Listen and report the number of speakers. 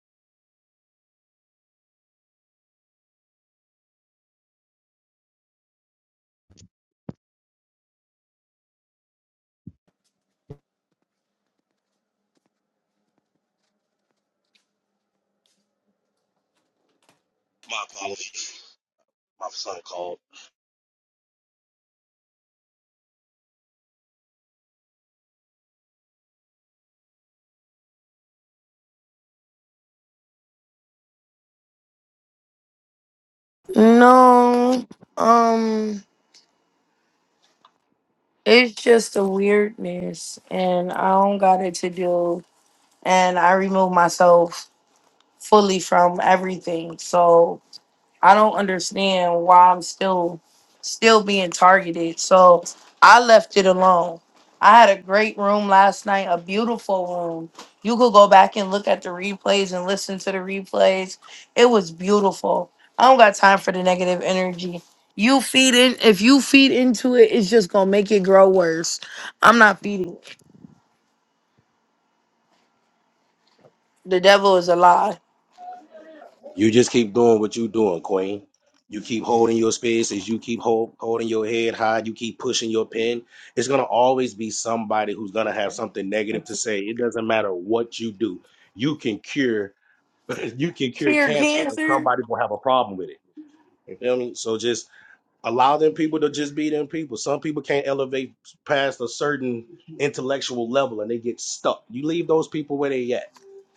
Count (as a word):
two